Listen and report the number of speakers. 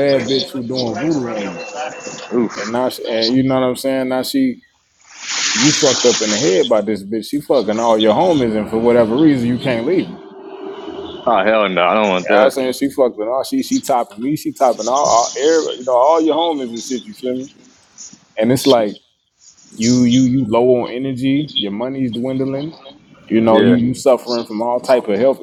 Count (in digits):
2